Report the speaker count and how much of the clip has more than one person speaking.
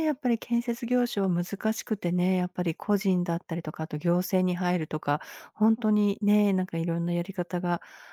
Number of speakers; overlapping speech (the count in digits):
1, no overlap